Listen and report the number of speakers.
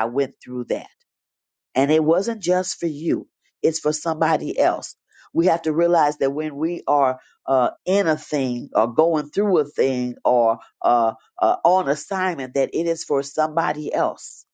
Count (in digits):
1